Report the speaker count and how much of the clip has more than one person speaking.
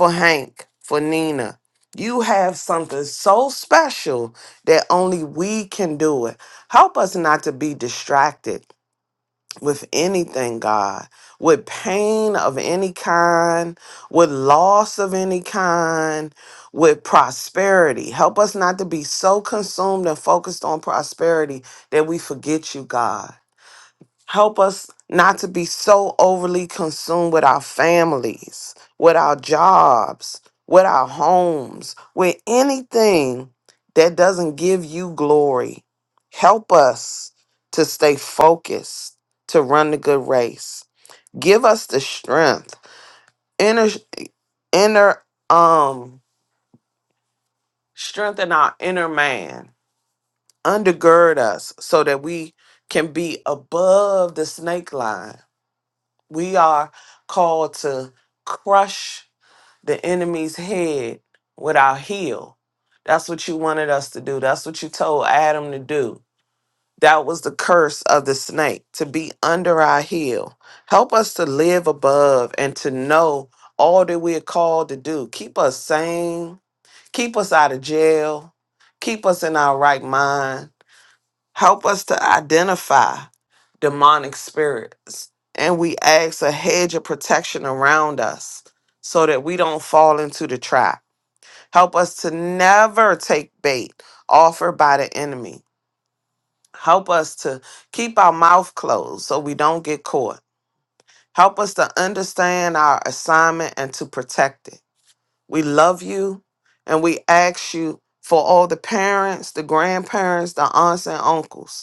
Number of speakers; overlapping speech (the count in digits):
1, no overlap